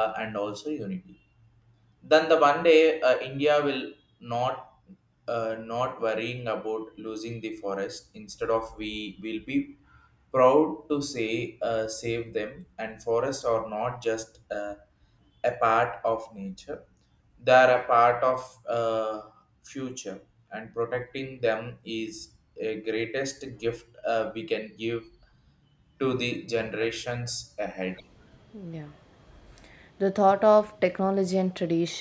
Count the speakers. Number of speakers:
2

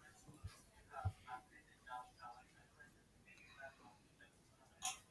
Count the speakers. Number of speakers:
0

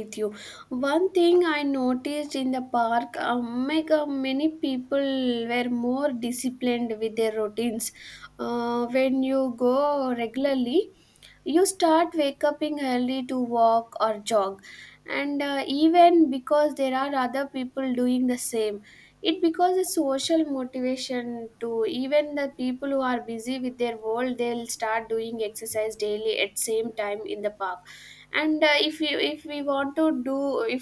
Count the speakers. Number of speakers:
1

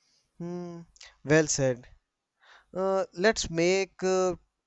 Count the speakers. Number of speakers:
1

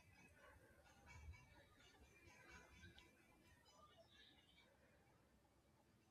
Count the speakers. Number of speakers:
0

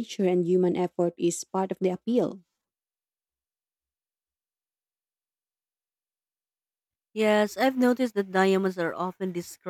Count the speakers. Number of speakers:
2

